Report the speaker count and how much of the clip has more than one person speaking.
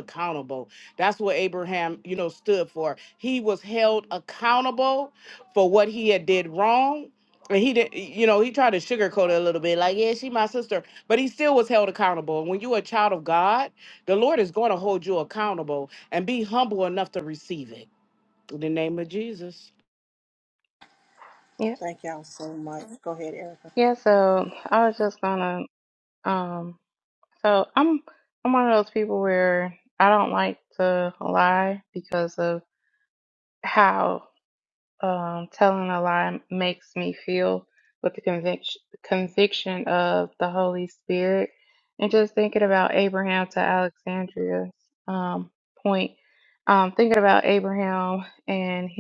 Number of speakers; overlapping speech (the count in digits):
3, no overlap